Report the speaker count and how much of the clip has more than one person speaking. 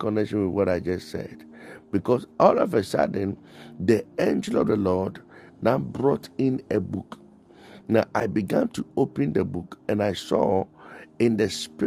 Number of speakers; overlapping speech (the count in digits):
1, no overlap